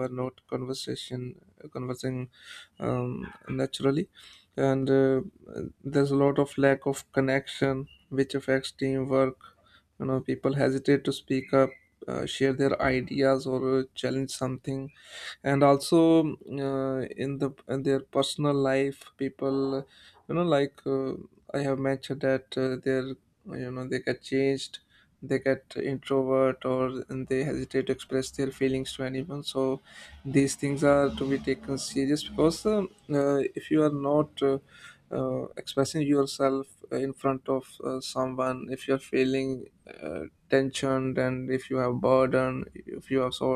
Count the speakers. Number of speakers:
1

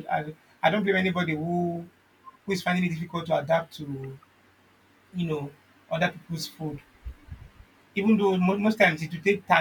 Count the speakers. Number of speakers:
1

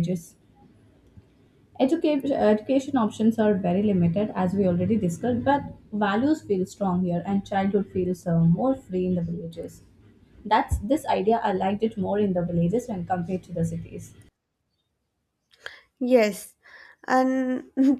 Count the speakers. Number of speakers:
2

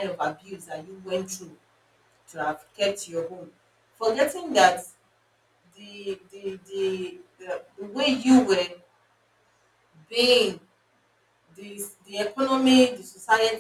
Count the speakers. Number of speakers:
1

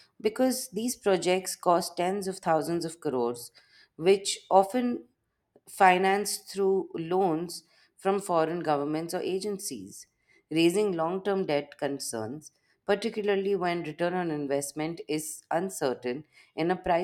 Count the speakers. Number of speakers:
1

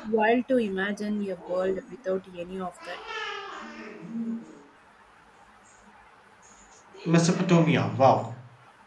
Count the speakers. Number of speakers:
2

